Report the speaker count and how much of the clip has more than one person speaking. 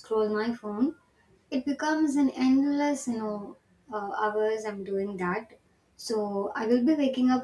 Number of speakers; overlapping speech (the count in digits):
1, no overlap